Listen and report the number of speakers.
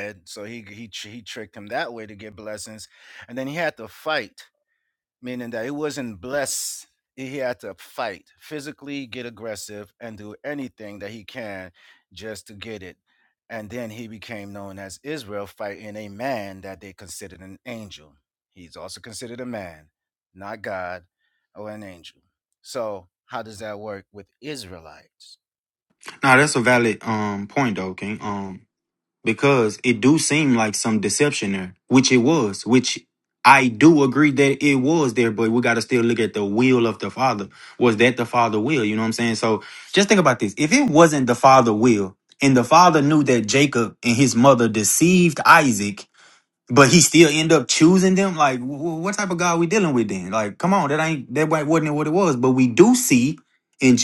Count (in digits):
2